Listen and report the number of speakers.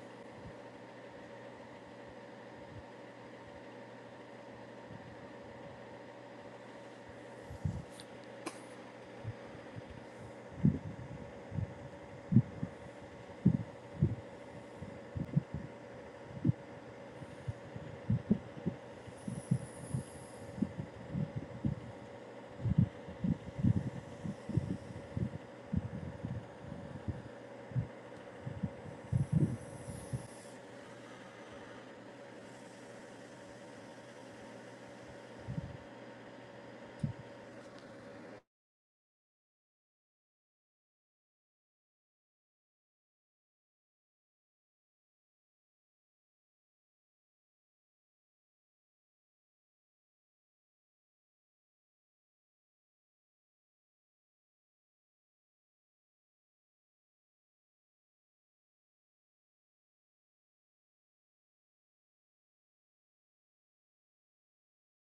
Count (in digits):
0